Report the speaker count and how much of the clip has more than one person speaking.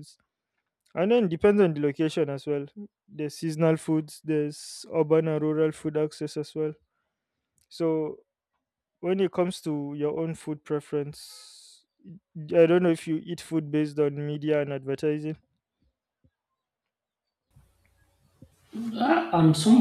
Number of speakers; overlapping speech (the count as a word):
two, no overlap